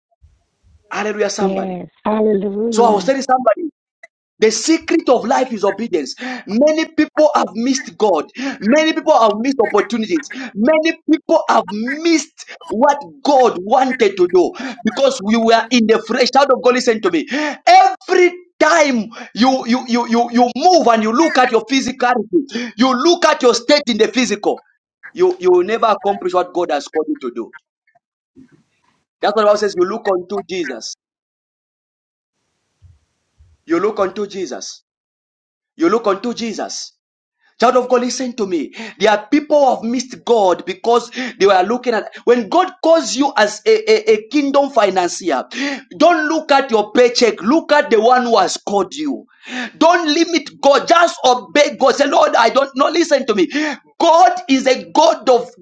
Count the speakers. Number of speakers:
2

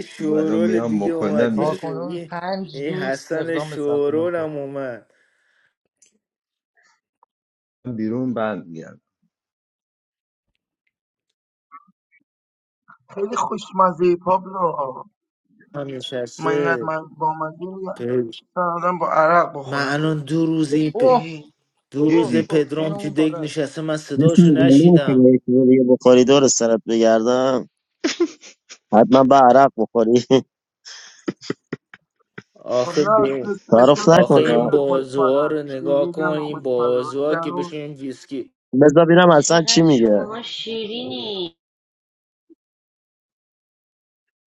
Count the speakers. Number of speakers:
6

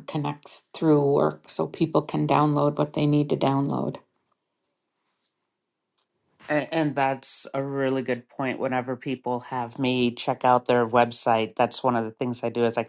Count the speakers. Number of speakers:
2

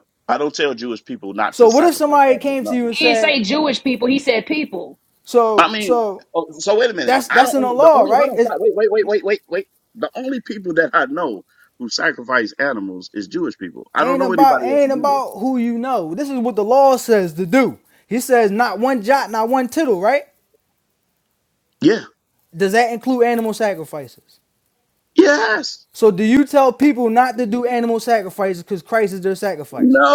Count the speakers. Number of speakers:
3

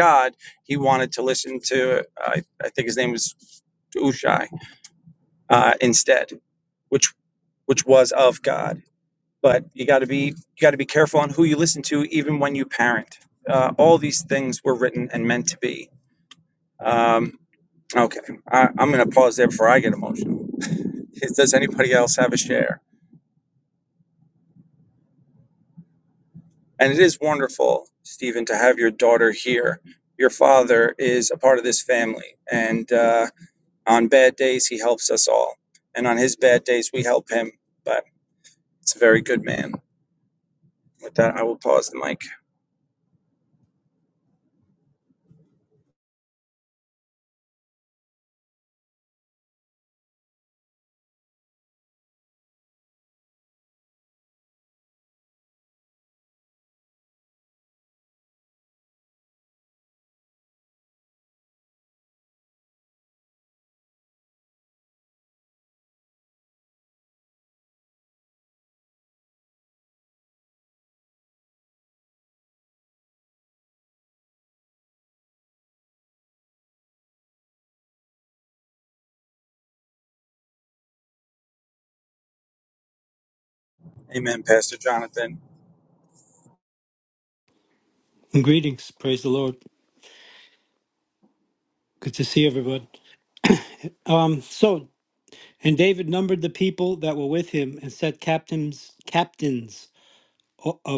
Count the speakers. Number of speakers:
2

